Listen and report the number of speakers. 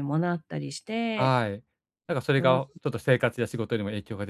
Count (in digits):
2